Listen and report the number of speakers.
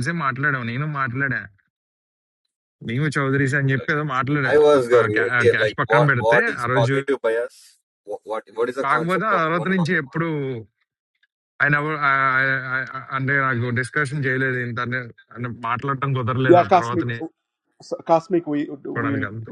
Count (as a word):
three